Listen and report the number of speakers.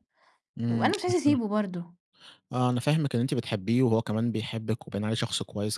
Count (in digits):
2